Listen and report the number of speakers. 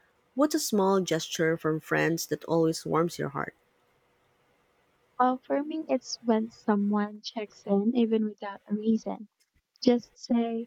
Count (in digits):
2